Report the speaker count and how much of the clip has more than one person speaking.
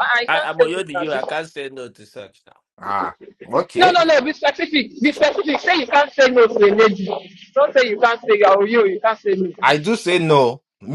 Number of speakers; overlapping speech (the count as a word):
three, about 12%